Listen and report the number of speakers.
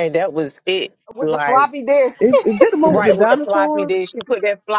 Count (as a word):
three